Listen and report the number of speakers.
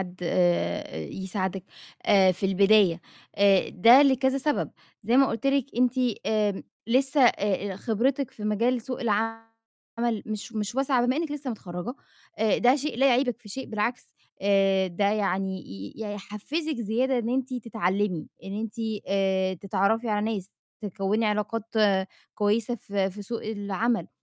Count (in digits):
1